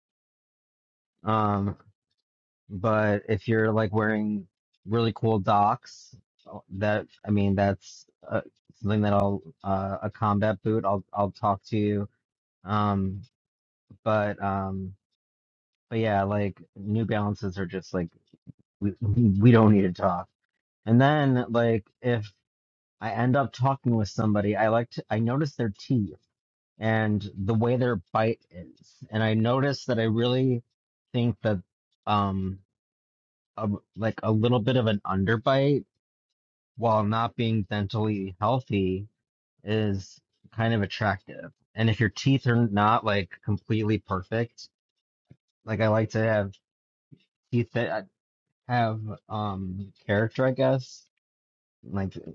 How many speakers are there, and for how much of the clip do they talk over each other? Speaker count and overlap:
one, no overlap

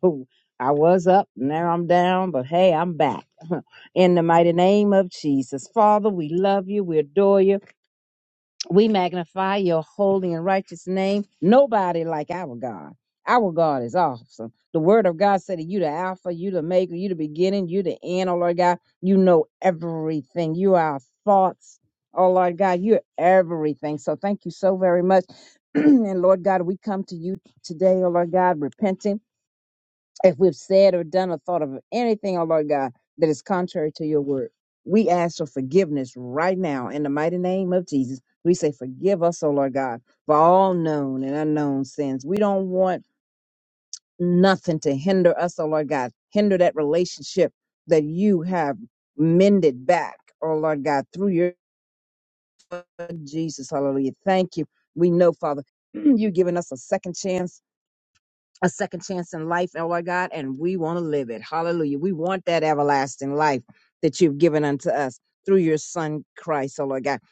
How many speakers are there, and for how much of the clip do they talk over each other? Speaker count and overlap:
one, no overlap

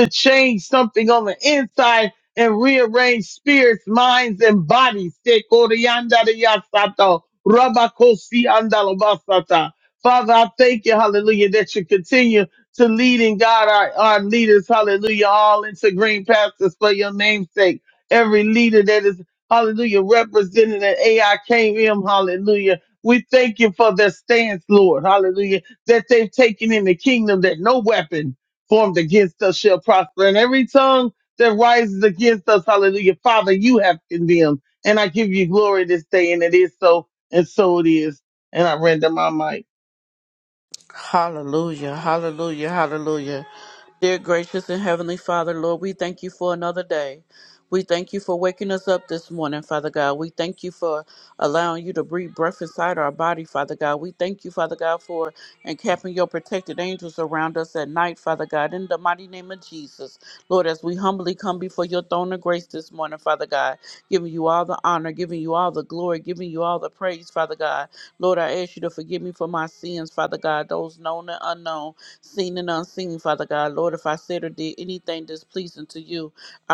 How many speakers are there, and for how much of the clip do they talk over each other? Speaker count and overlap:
two, no overlap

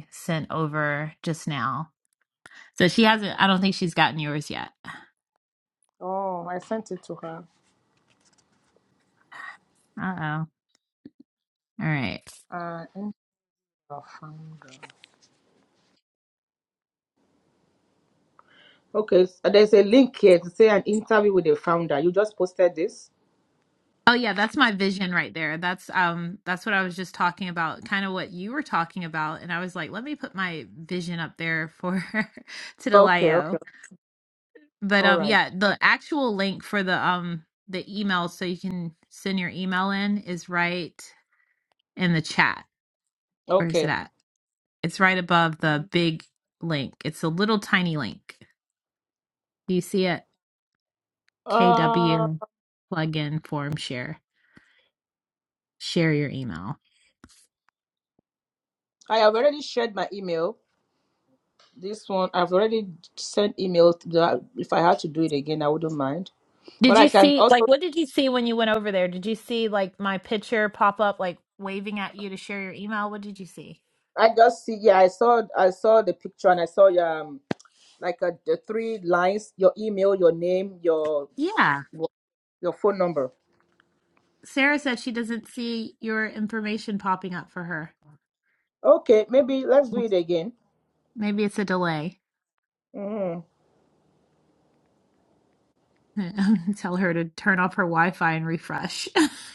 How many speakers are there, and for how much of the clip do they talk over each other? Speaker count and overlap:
two, about 3%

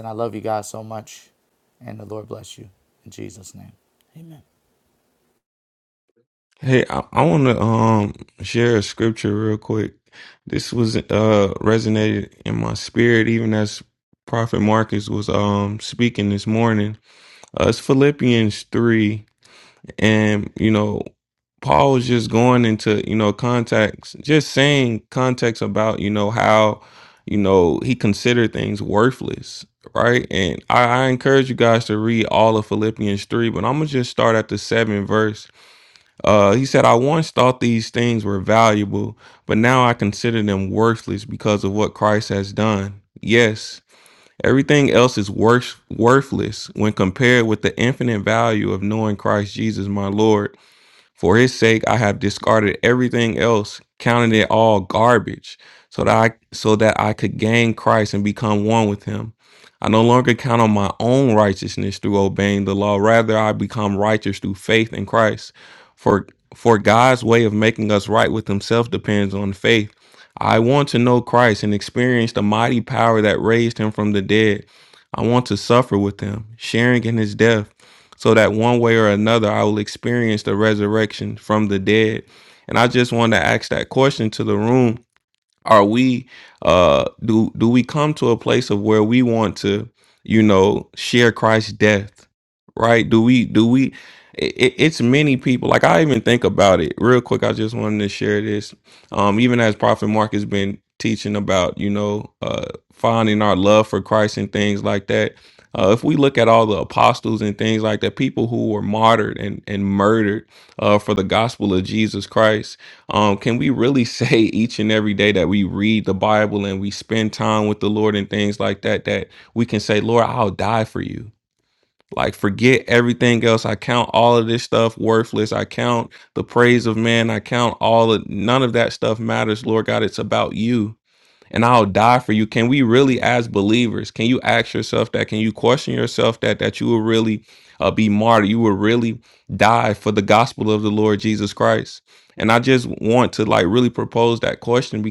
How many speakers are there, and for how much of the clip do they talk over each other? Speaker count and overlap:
two, no overlap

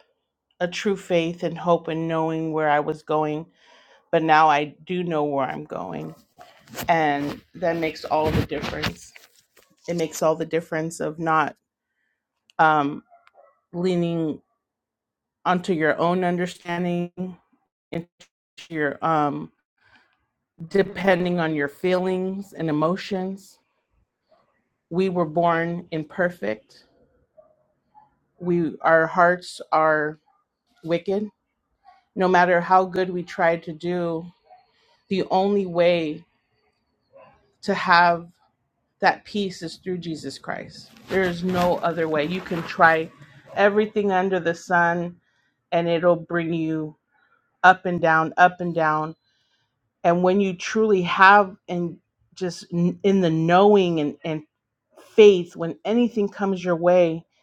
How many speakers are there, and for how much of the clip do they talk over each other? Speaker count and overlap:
one, no overlap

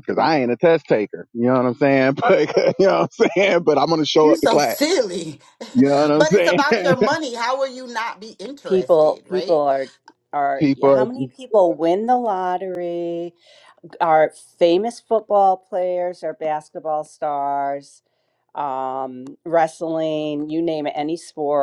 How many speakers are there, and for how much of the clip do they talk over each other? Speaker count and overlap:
three, about 14%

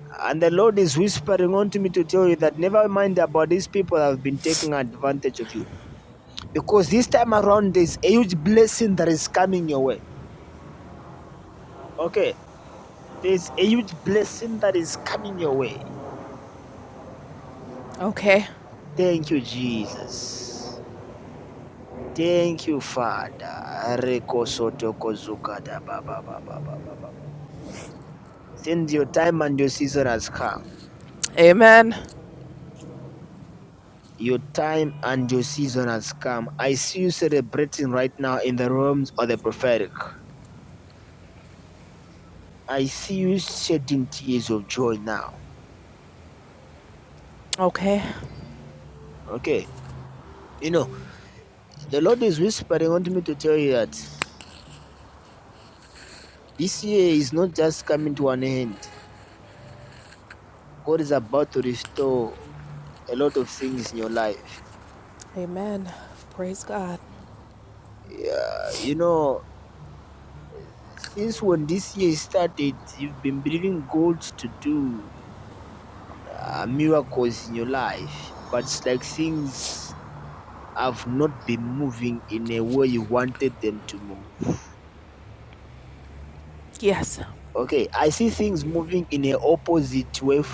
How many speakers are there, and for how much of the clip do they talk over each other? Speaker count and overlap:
two, no overlap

